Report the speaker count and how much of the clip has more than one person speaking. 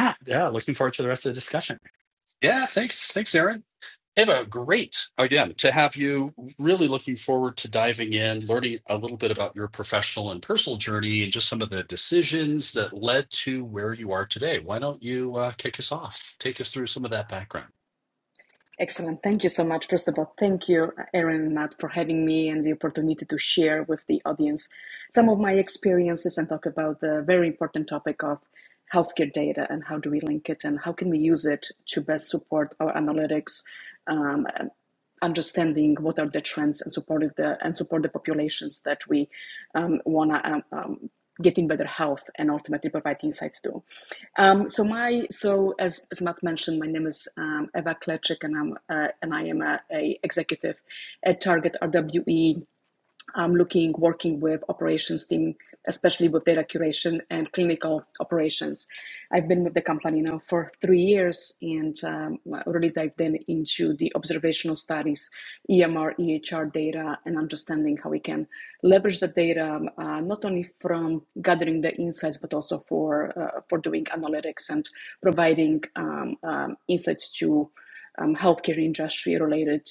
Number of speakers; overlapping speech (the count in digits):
3, no overlap